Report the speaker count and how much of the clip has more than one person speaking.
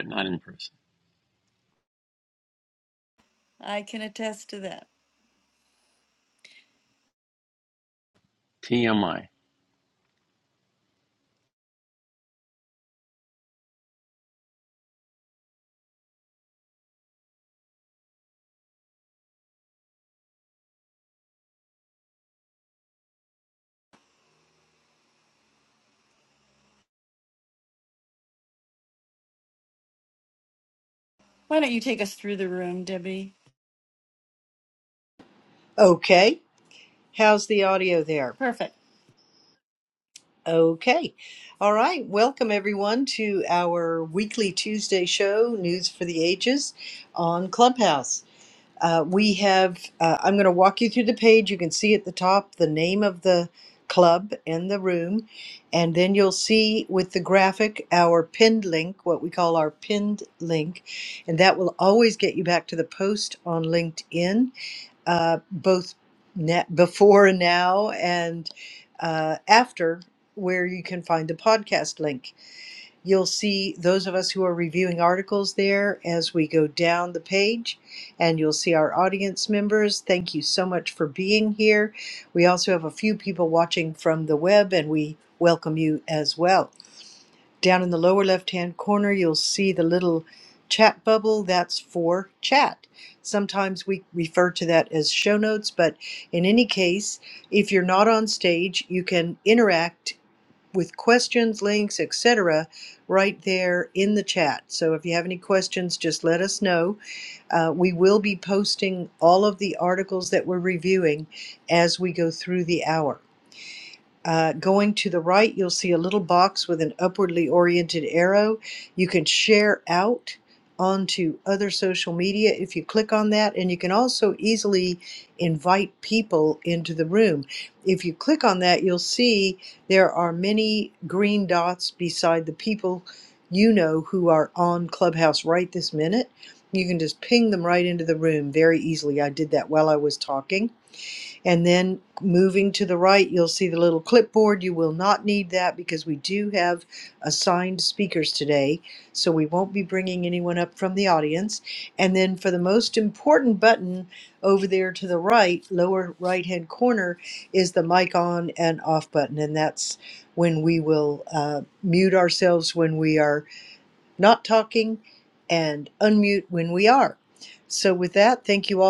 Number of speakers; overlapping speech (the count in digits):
3, no overlap